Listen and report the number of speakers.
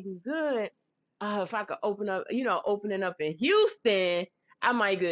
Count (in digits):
1